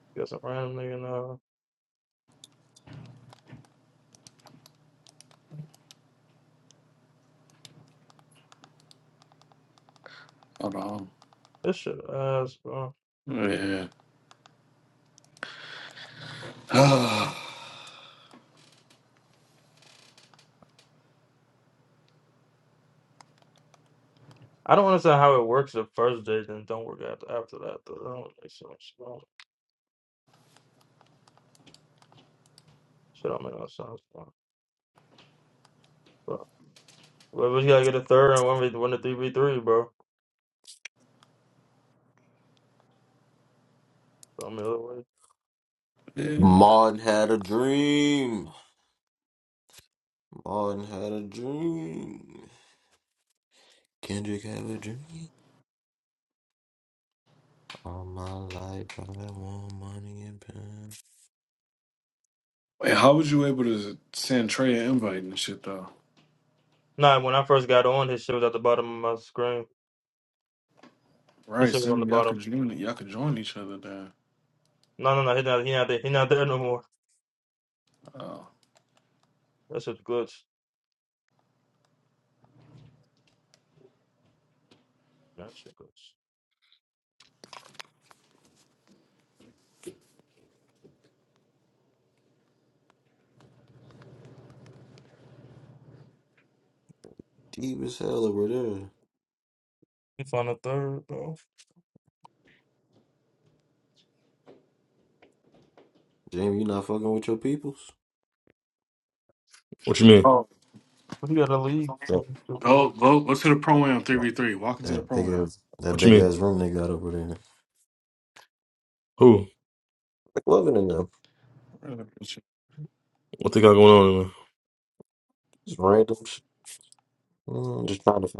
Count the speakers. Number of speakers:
4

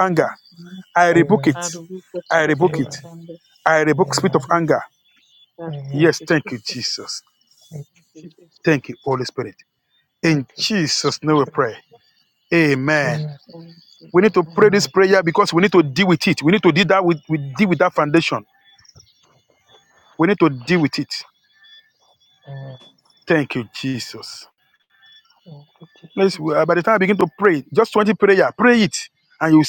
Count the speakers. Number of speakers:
3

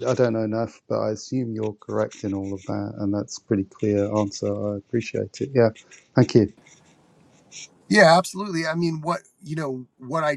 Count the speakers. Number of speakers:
2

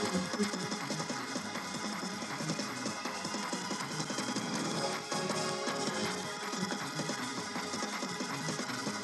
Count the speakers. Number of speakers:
0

